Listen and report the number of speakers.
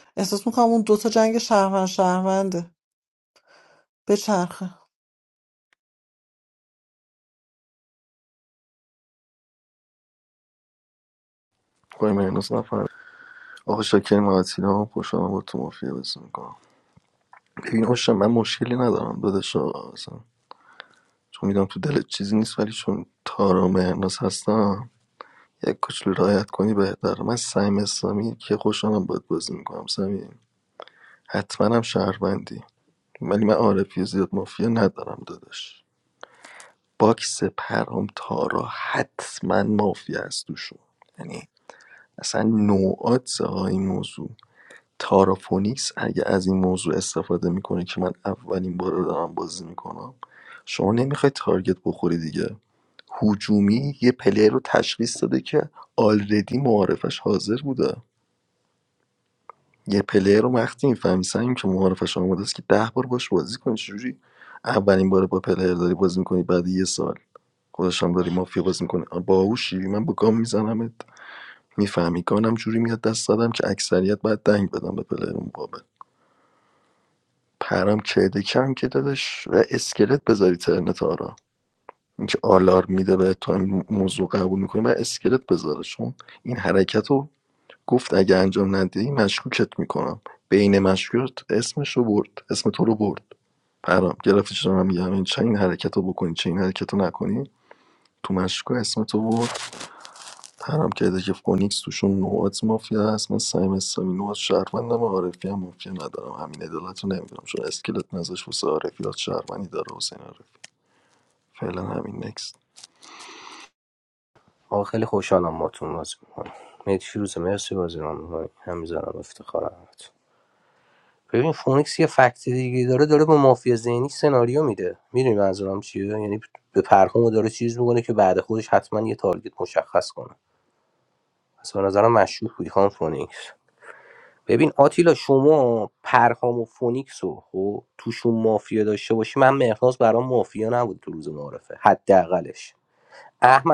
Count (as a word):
three